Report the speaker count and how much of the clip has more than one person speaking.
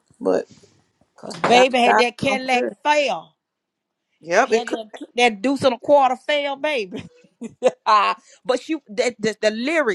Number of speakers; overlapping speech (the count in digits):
2, about 15%